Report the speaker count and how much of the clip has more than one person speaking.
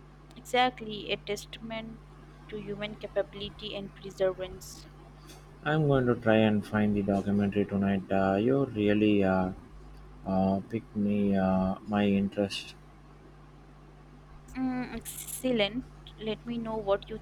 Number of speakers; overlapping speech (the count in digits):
2, no overlap